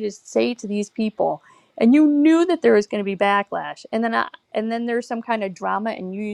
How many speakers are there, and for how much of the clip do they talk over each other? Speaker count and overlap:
one, no overlap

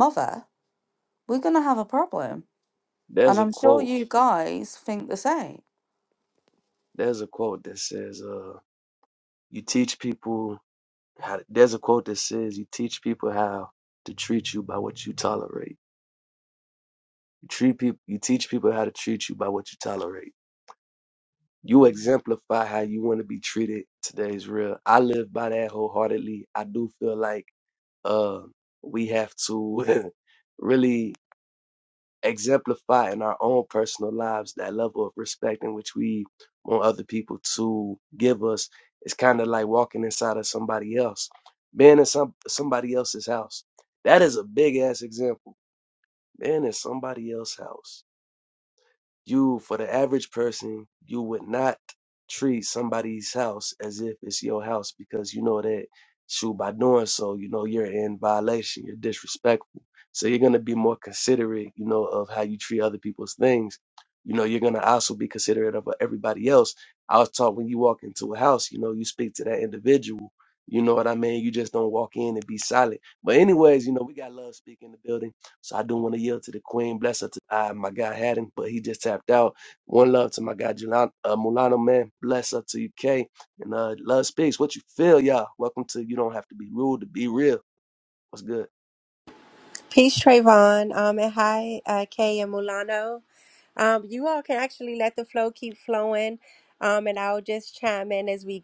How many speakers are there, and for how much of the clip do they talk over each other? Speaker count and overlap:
three, about 1%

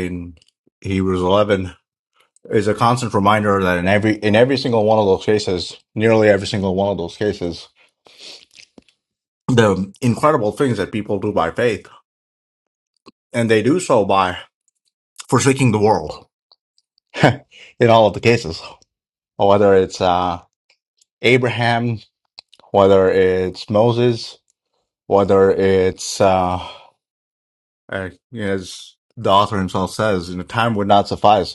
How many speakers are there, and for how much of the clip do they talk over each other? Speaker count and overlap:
one, no overlap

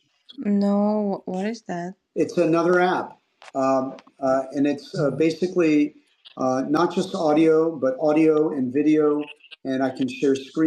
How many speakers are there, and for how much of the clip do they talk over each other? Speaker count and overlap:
two, no overlap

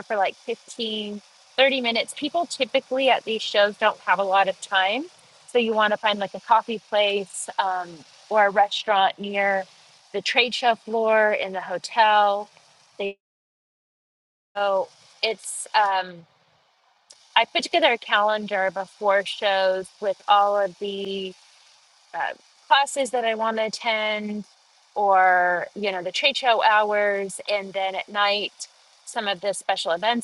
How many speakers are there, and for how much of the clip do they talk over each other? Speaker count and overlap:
one, no overlap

